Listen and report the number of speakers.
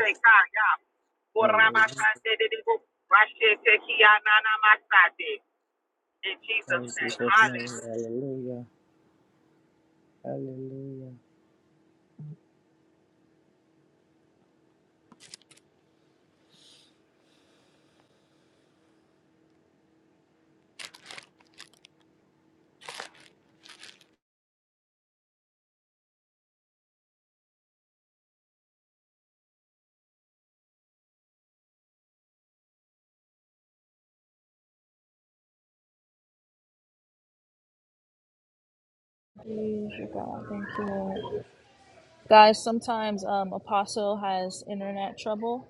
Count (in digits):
3